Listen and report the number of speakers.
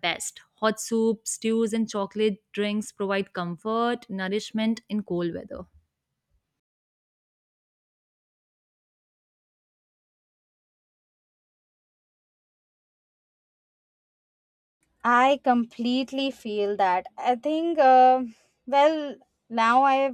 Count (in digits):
2